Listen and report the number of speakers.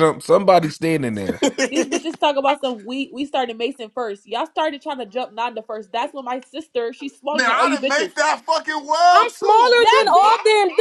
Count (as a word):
three